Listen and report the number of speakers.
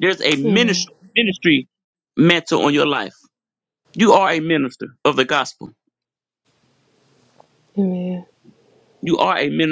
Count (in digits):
2